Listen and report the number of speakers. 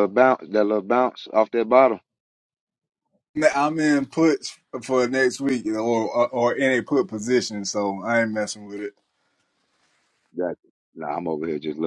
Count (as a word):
two